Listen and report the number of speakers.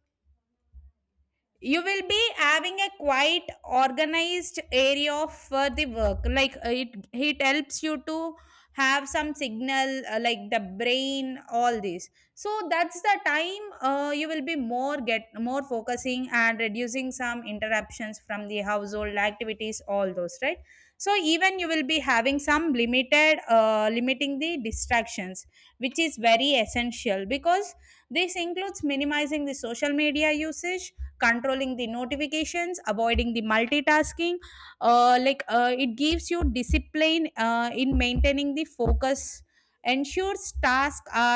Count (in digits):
1